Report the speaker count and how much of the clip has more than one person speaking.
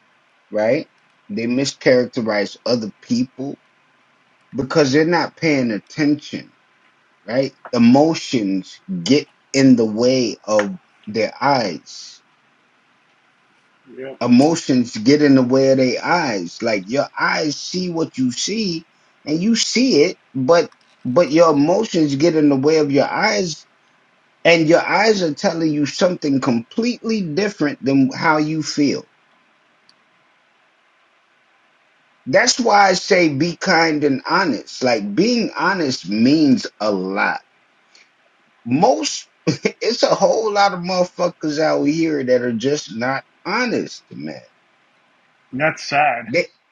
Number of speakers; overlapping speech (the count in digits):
2, under 1%